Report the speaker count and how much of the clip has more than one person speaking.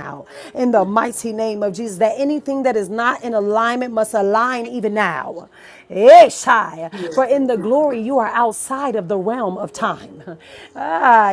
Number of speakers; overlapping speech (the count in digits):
1, no overlap